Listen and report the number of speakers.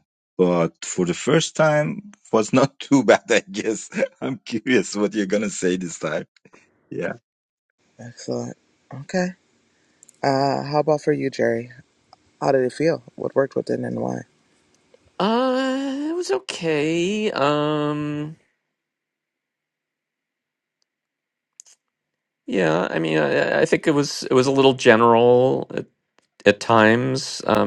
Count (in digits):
3